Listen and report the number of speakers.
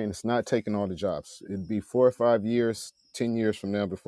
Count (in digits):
1